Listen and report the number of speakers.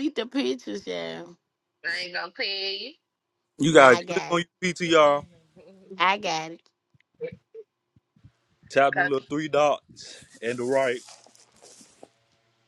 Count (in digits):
3